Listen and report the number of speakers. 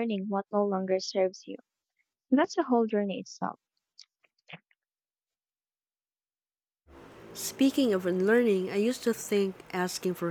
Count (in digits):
2